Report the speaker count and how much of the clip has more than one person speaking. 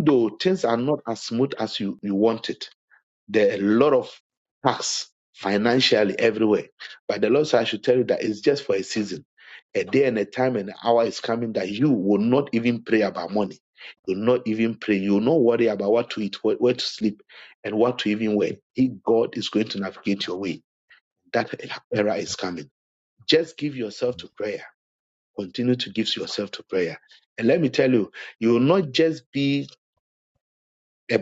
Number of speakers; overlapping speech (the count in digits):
1, no overlap